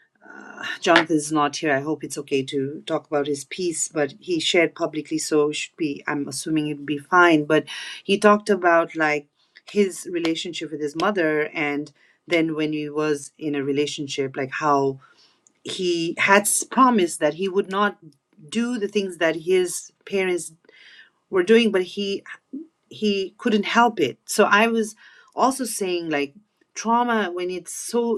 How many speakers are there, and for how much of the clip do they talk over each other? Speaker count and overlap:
1, no overlap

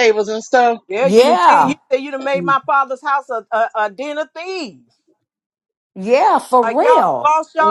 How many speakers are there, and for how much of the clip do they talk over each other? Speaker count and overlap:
3, about 22%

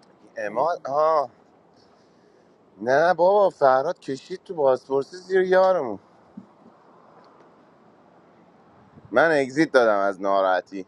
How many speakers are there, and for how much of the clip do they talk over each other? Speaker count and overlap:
1, no overlap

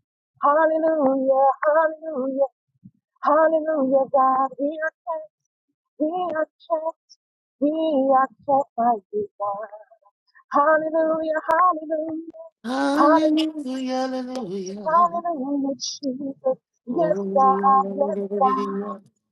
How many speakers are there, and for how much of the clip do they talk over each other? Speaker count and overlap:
2, about 10%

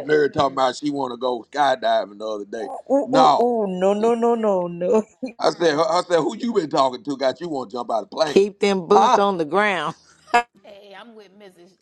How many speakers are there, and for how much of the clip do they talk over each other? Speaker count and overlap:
4, about 8%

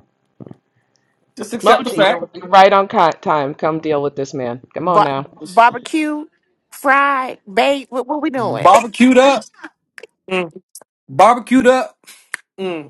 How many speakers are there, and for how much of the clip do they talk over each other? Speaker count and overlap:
3, about 9%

